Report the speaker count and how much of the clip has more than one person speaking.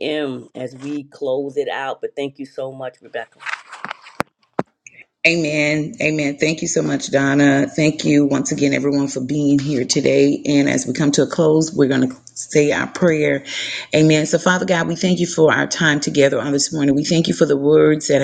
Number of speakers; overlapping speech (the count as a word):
two, no overlap